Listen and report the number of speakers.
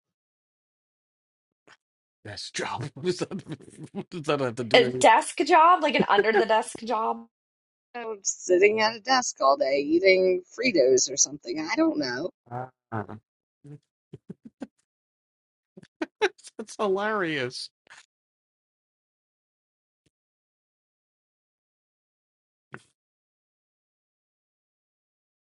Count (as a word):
three